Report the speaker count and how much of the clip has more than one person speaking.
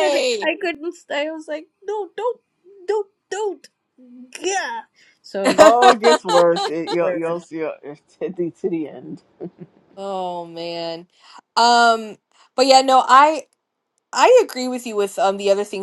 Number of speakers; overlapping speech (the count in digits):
3, about 3%